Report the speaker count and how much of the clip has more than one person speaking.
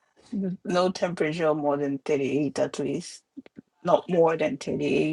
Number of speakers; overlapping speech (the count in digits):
1, no overlap